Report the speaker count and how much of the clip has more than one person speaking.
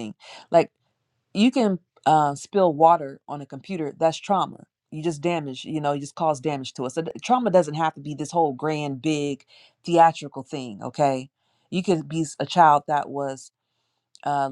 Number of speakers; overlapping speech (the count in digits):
1, no overlap